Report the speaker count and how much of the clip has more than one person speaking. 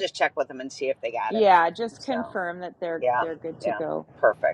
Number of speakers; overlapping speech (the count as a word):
two, about 18%